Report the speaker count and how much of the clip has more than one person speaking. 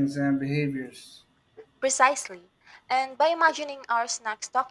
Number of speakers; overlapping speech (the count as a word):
two, no overlap